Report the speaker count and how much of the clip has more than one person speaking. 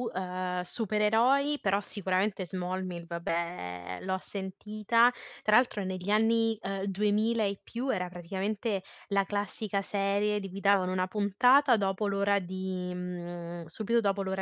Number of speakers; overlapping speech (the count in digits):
1, no overlap